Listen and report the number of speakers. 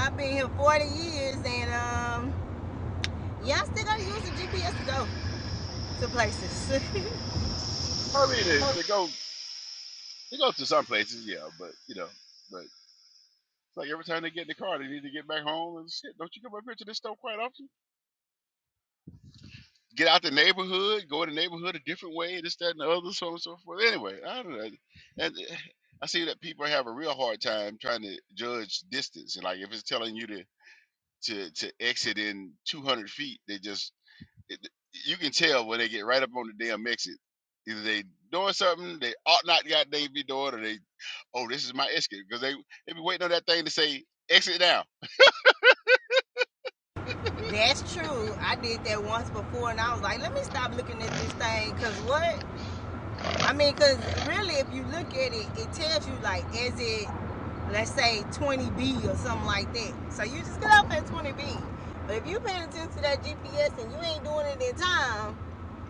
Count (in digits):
2